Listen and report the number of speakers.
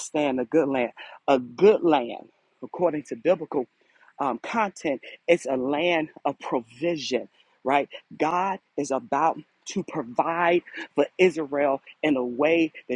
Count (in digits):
1